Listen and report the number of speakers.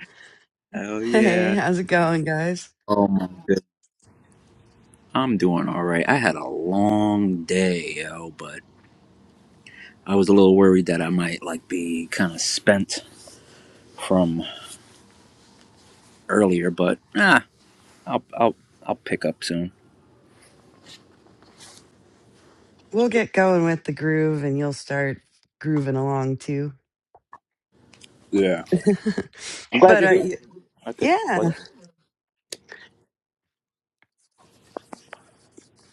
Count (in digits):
2